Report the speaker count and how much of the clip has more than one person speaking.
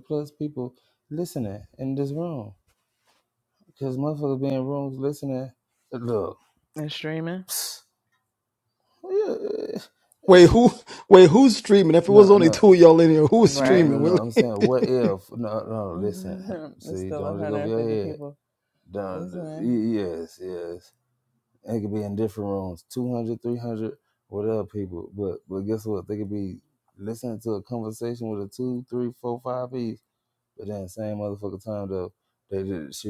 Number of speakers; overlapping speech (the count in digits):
3, about 15%